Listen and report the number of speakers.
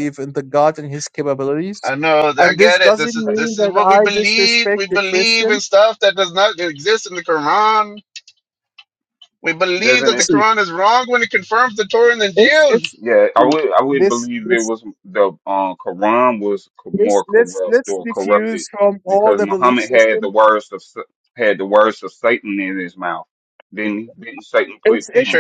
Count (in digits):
3